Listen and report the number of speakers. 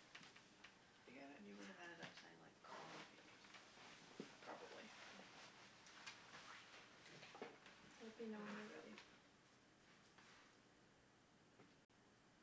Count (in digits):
2